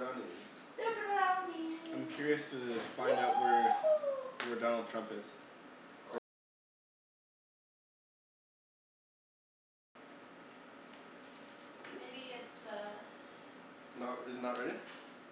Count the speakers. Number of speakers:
3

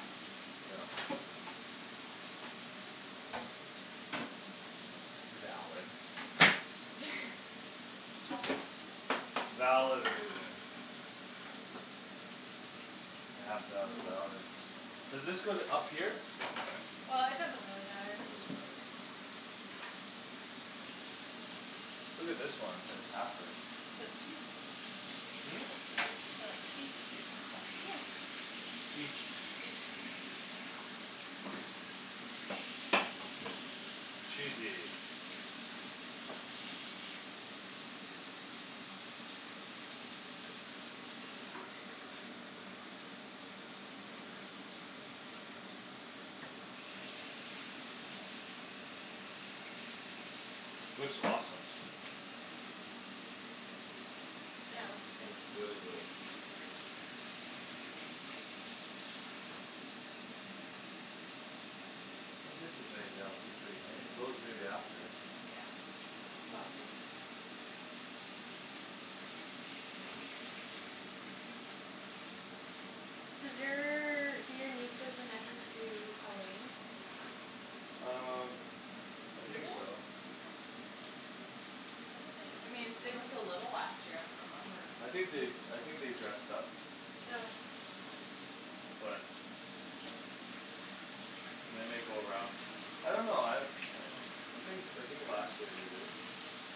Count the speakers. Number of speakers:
3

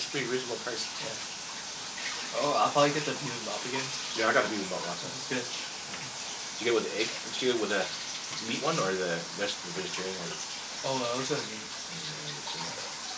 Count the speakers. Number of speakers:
2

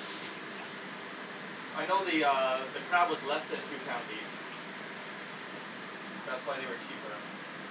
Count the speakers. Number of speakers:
1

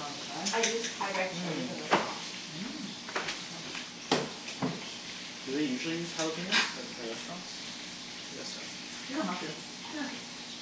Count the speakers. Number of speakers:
3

